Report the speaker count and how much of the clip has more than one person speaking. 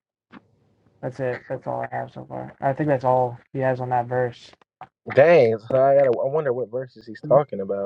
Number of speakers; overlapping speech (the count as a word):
two, no overlap